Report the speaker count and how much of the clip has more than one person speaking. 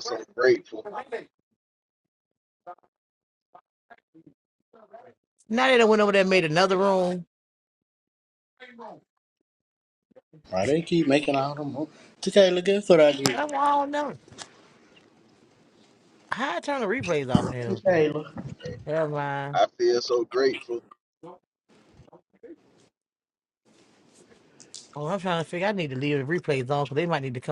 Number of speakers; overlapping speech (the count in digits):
3, about 1%